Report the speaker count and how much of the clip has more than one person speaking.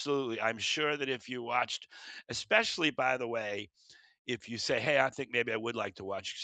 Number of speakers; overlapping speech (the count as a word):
one, no overlap